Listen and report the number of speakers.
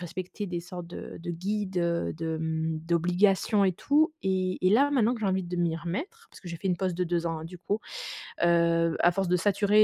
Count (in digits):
1